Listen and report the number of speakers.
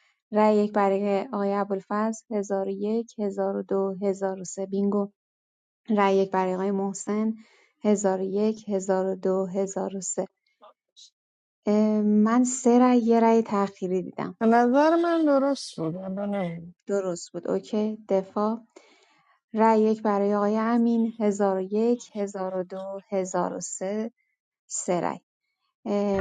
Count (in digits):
2